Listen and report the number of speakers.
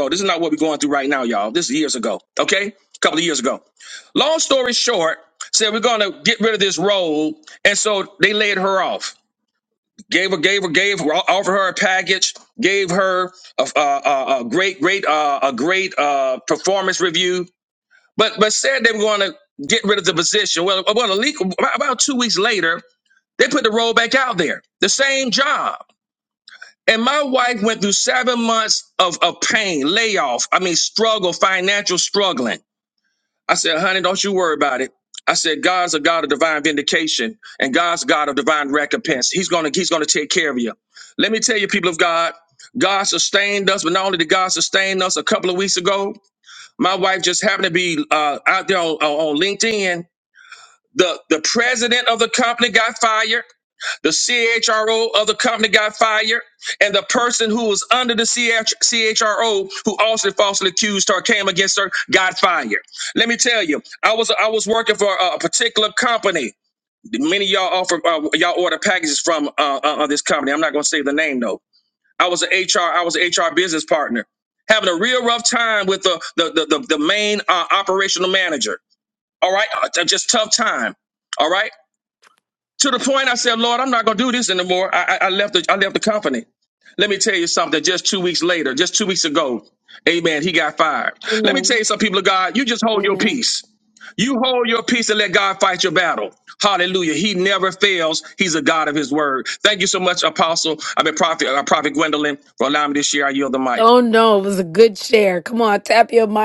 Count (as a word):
two